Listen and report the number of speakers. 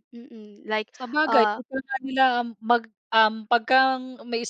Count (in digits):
2